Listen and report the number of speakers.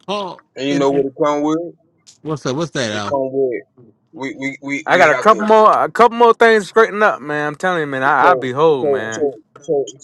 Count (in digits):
3